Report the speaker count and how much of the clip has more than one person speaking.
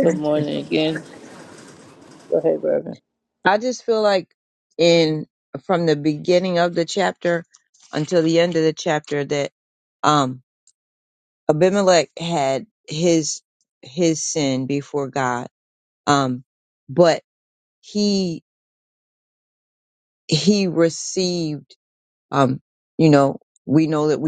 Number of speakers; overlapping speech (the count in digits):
2, under 1%